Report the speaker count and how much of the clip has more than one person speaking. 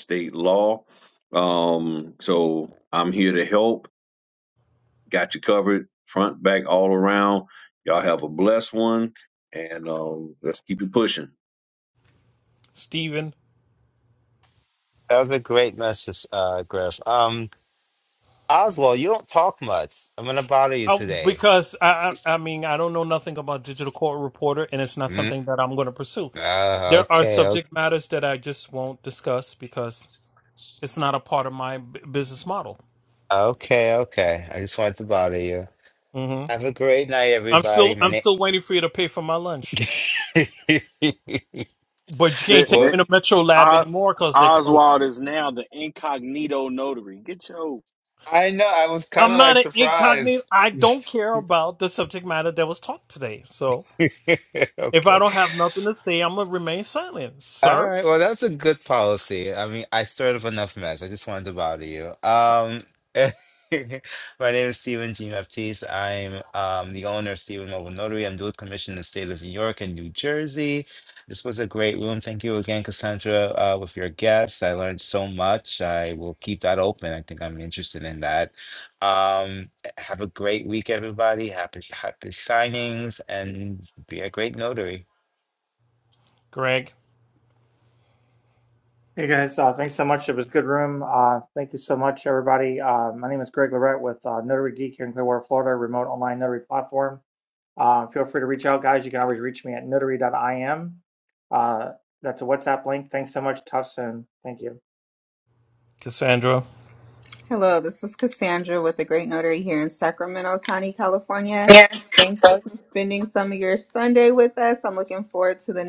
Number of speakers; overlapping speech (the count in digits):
6, about 5%